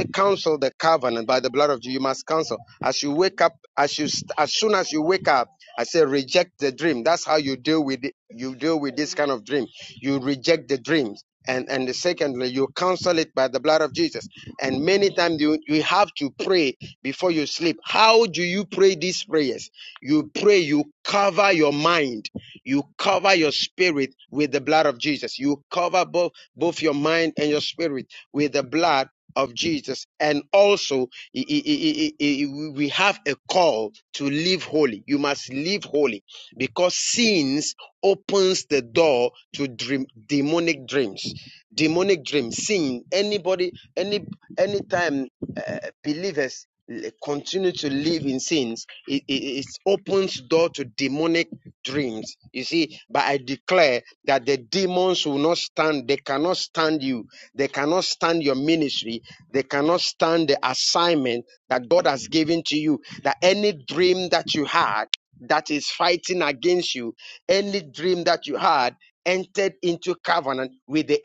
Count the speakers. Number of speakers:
1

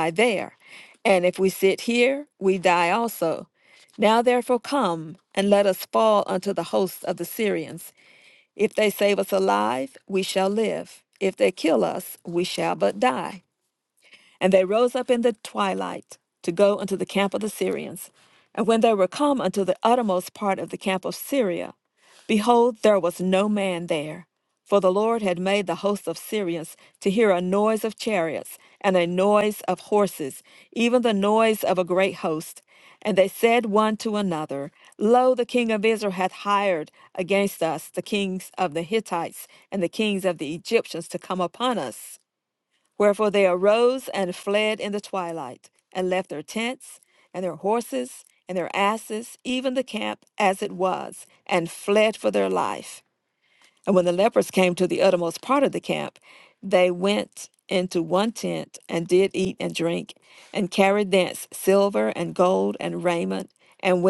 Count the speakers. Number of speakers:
1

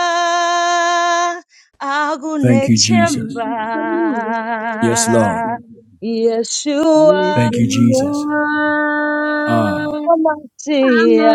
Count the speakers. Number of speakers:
3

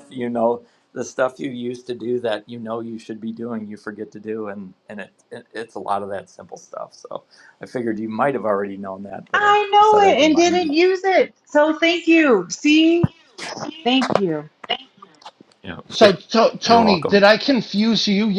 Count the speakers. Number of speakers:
3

